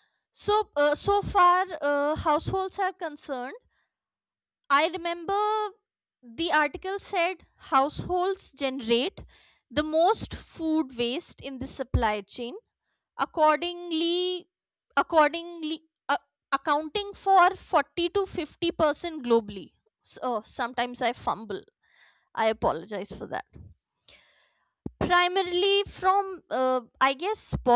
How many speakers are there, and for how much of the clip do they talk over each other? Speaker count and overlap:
one, no overlap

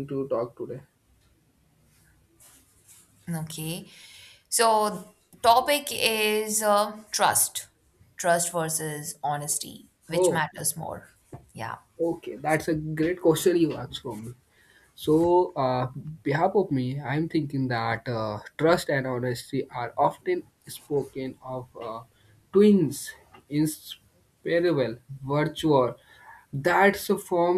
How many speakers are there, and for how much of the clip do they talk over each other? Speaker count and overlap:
two, about 1%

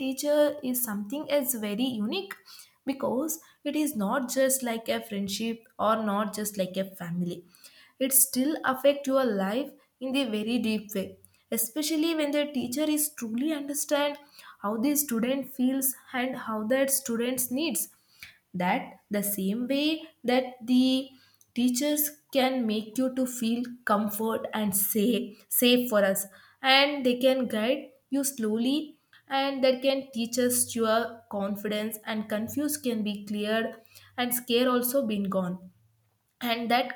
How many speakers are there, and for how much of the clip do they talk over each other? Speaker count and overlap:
one, no overlap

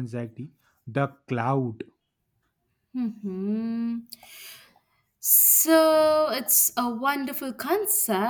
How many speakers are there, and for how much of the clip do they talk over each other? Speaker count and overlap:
two, no overlap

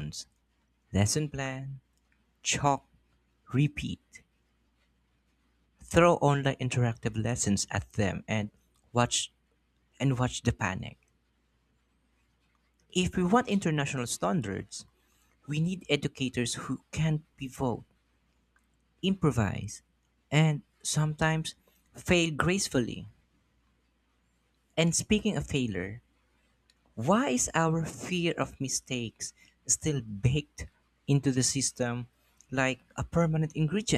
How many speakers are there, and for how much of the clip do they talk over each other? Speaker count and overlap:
one, no overlap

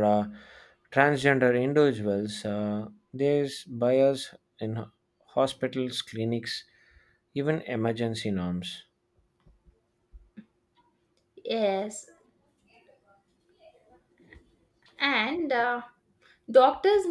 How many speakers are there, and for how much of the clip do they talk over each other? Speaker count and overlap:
two, no overlap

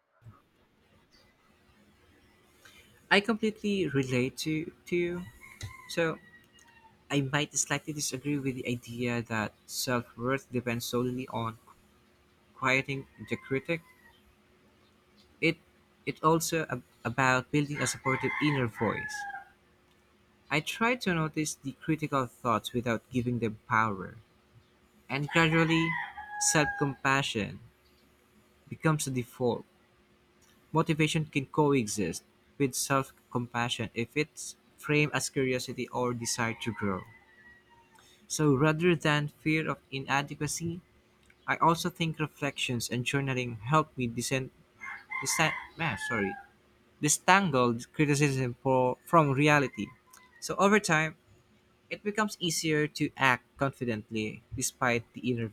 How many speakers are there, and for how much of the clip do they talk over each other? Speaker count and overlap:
one, no overlap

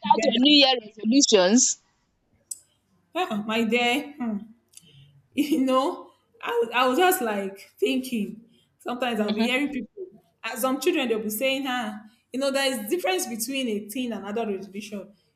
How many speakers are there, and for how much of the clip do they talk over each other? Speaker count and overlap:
two, about 6%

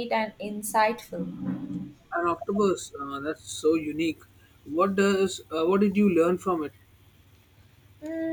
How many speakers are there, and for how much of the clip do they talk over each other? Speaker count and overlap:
two, no overlap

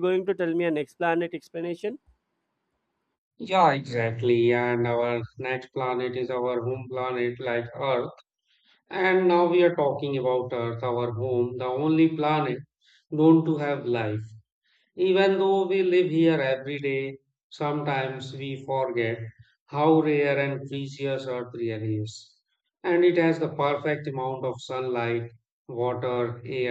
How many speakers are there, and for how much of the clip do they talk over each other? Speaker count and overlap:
two, no overlap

